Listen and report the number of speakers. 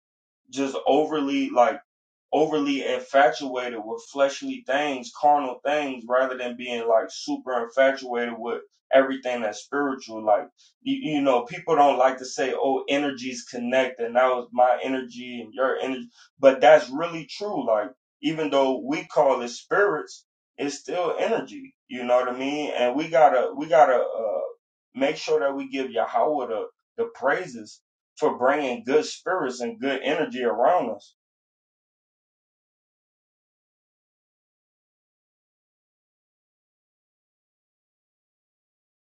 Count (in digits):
1